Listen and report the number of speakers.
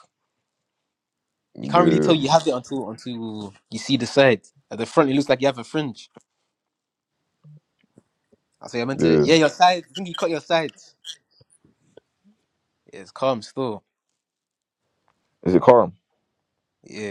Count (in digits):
2